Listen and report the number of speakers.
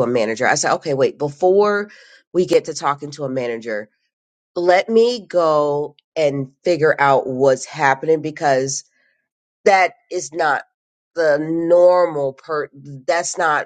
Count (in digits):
1